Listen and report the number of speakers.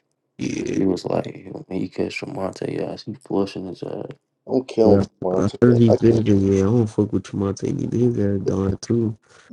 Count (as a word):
three